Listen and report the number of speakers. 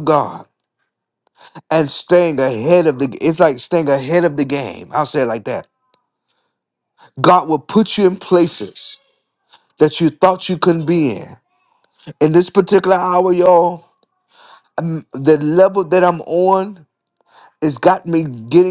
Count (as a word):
one